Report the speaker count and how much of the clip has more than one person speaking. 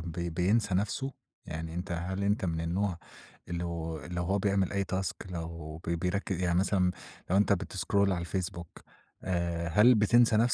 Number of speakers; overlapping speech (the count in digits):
1, no overlap